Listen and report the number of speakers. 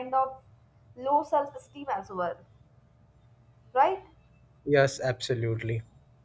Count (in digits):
2